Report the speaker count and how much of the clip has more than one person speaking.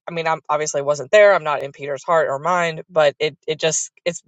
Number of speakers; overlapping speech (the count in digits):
1, no overlap